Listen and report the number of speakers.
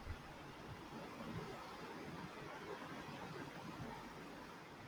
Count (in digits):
0